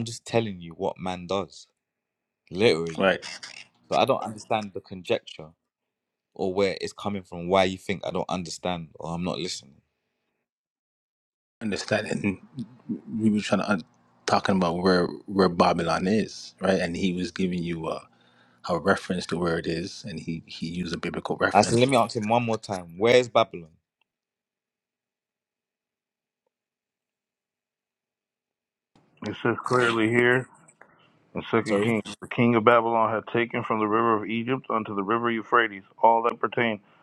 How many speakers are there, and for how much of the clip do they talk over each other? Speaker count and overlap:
three, about 2%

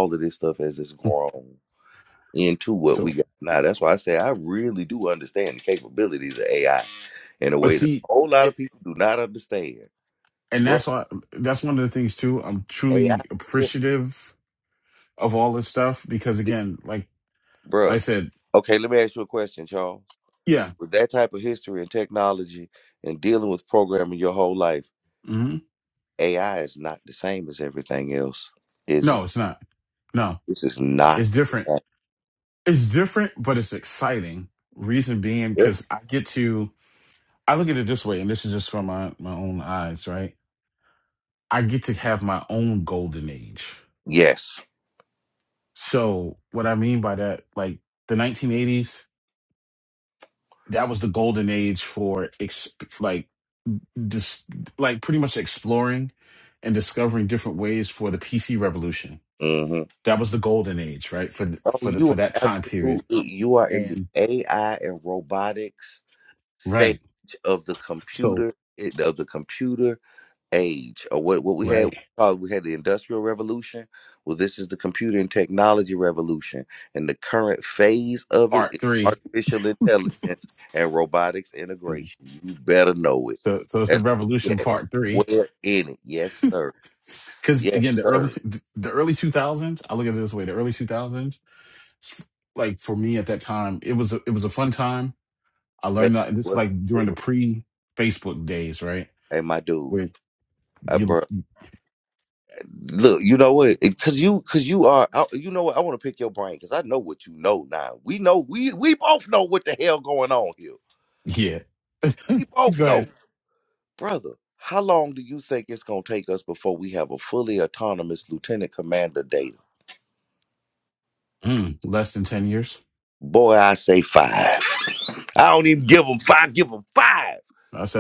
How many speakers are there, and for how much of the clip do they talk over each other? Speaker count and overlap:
two, about 6%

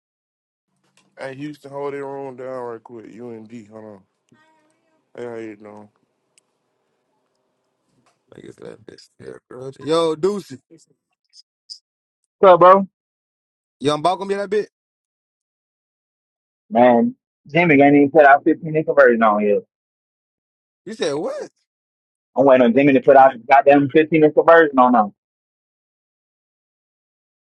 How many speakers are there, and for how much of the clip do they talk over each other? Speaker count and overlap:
three, no overlap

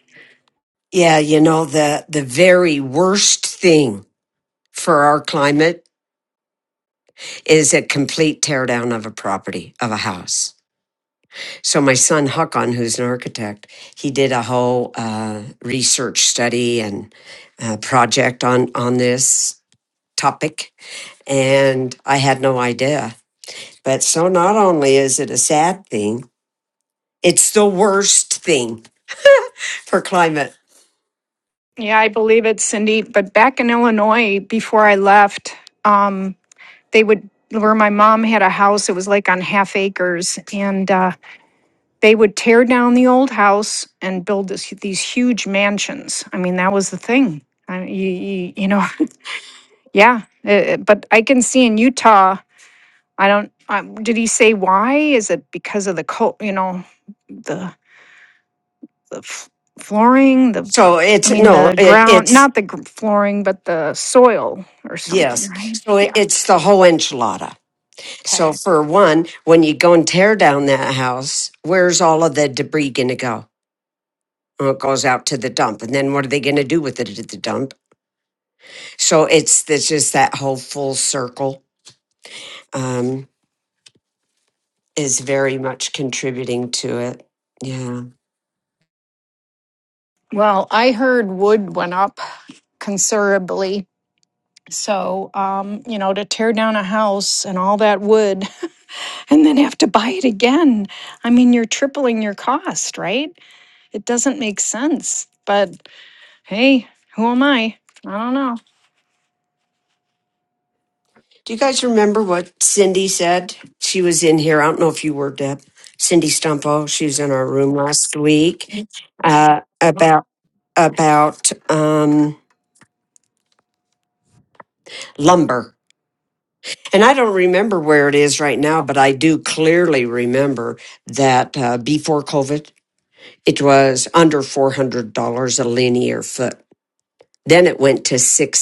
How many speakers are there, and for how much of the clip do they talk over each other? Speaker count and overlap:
two, about 2%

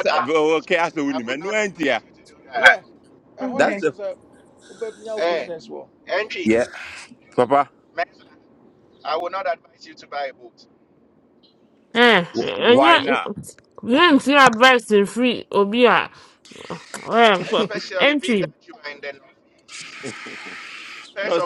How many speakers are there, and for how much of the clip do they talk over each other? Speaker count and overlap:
four, about 22%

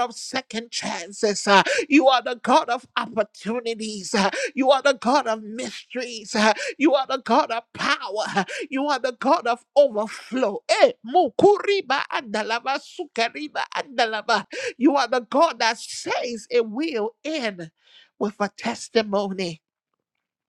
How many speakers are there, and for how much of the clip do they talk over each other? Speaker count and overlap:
one, no overlap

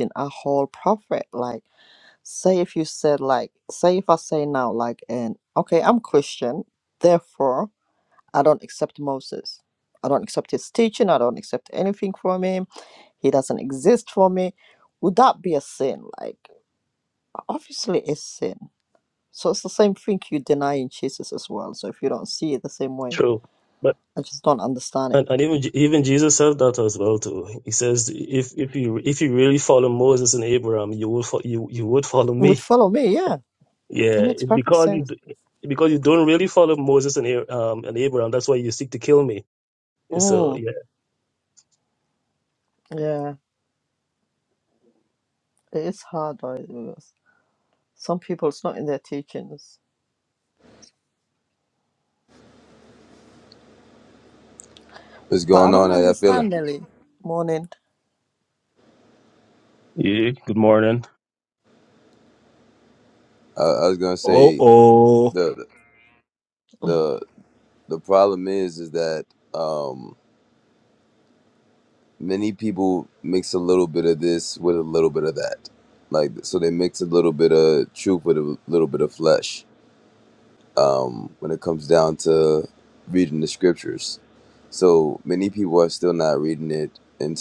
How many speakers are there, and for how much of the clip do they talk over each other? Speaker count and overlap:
four, about 4%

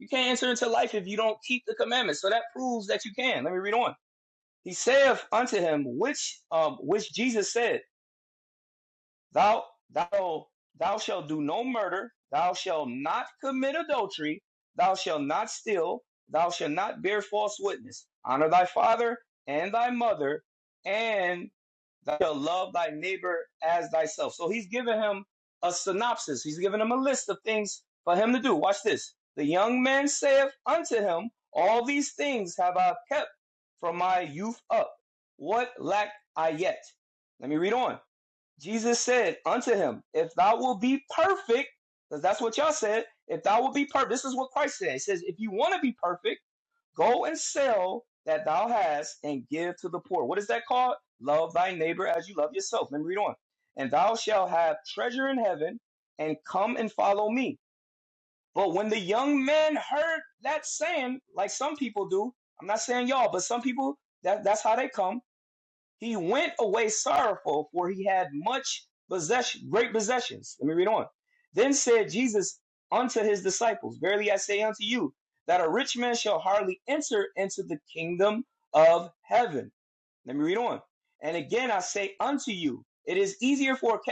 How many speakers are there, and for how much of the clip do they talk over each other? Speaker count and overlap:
one, no overlap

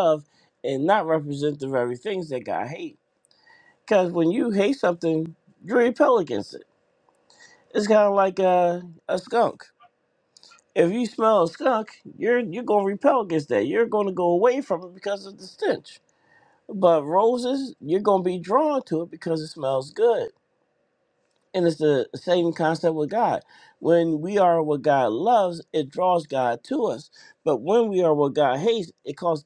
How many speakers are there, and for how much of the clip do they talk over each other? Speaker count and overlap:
one, no overlap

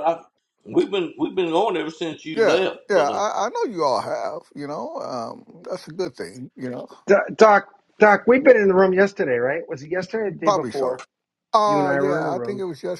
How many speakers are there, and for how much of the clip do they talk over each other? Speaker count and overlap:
three, about 18%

